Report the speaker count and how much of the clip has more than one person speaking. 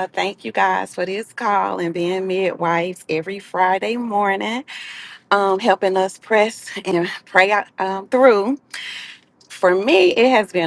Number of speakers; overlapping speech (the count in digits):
1, no overlap